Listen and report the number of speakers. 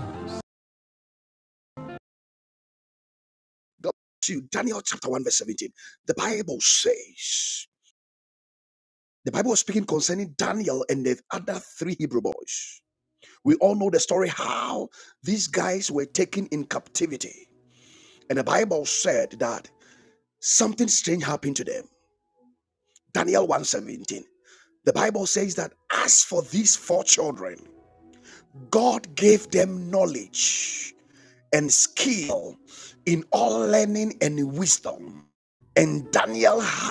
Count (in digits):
1